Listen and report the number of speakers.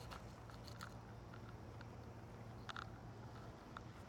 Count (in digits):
0